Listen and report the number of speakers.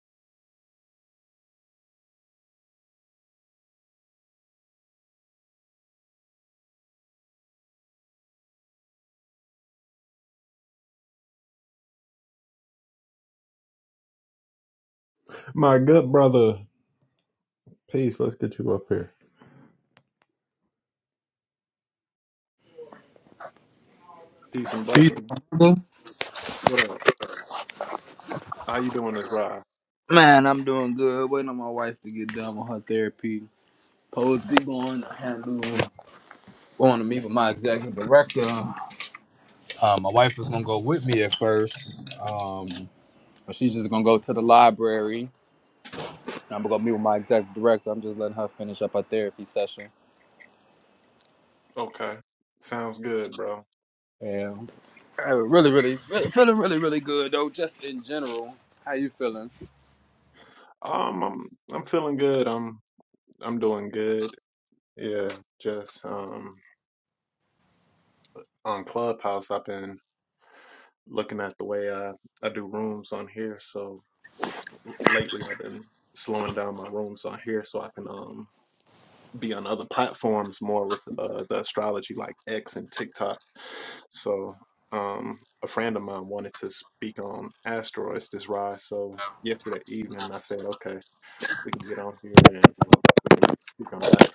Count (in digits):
2